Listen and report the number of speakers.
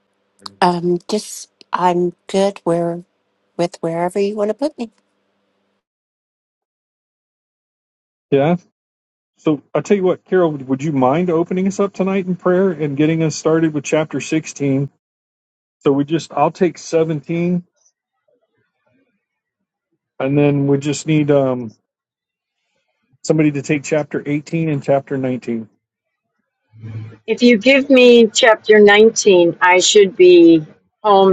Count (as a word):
three